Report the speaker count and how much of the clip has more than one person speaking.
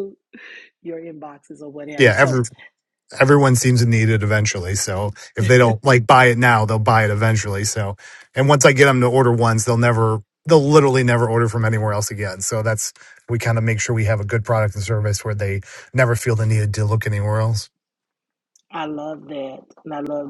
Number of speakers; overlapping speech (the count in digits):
2, about 2%